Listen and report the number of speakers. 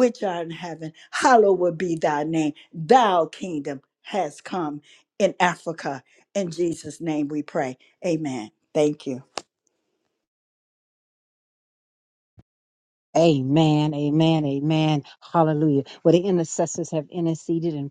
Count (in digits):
2